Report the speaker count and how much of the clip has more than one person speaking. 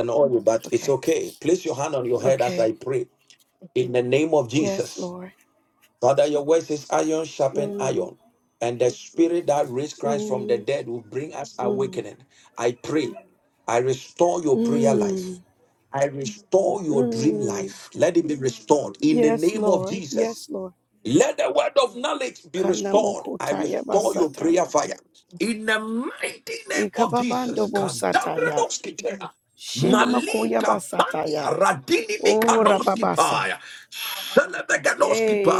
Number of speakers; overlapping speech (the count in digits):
2, about 37%